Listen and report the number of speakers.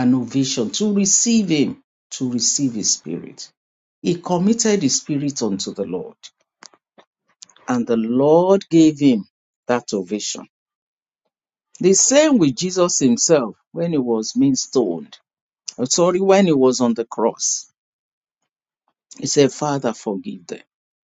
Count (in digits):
1